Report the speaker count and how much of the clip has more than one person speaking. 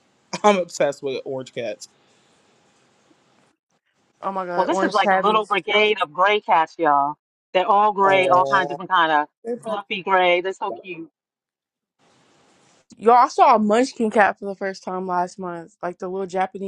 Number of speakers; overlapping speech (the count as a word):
three, about 9%